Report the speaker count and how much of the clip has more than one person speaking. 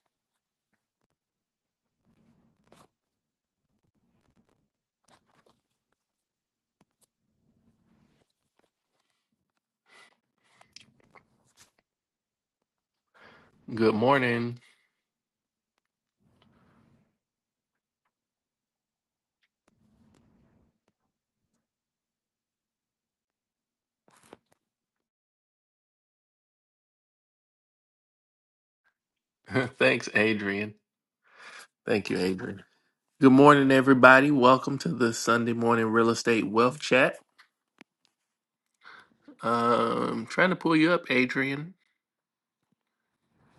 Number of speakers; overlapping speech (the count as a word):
one, no overlap